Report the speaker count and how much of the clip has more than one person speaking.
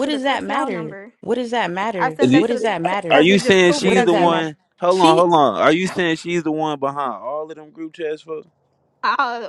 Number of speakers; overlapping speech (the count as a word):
three, about 41%